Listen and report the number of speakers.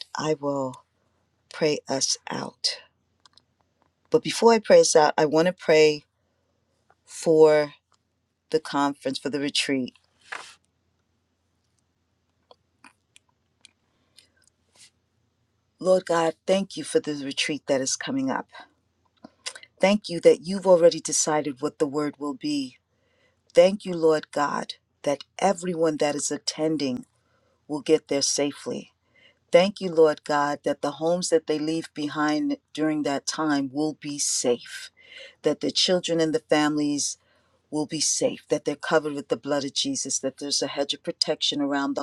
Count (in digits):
1